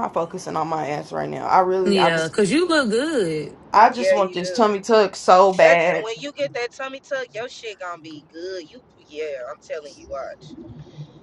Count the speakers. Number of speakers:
three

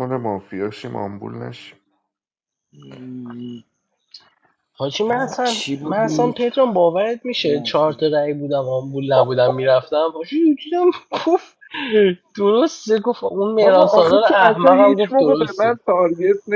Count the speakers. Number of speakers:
three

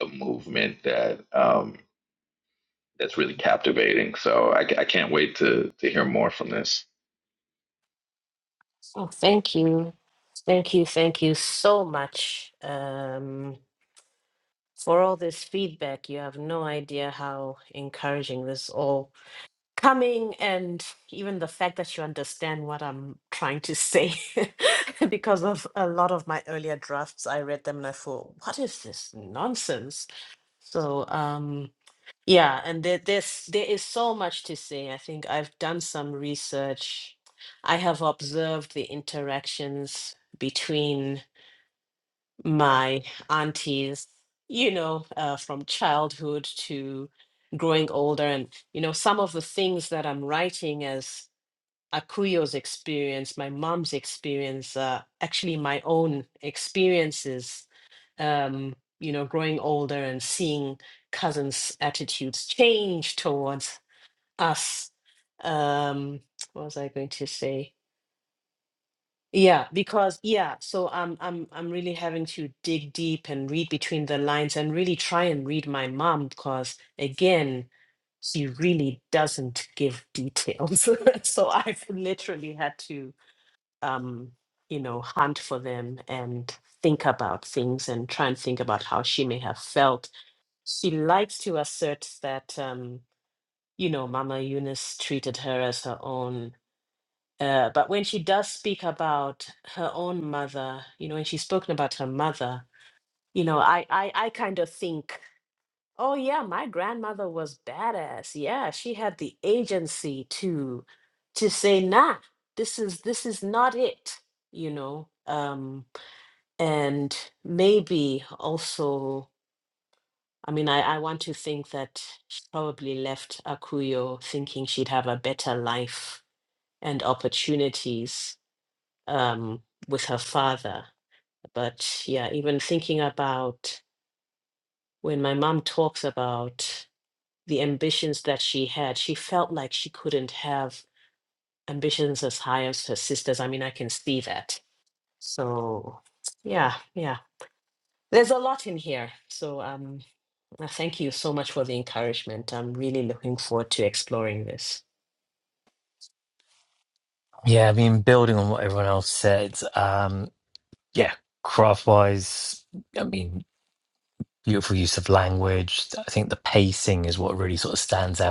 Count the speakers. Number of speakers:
three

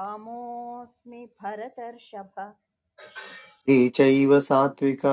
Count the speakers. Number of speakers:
two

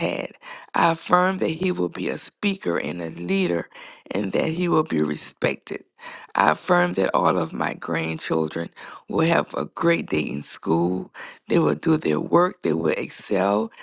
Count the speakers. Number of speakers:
one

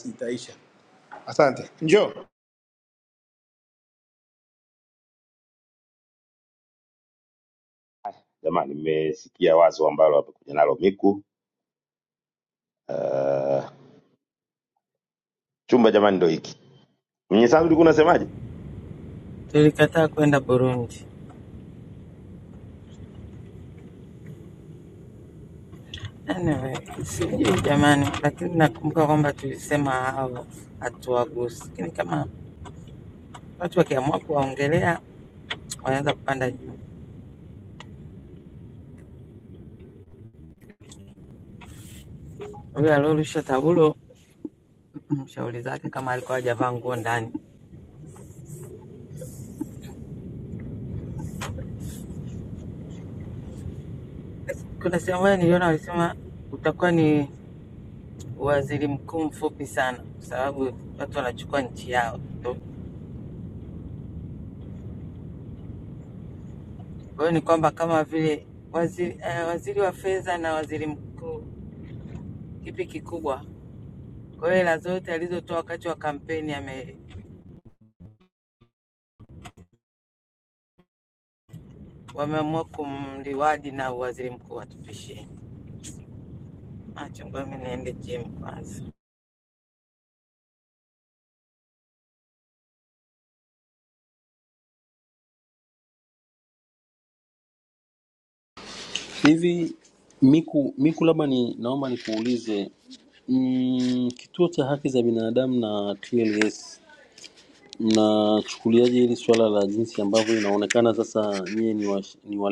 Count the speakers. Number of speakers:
four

